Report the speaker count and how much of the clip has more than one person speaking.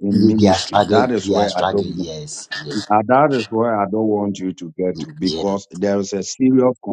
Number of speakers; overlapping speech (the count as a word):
two, about 31%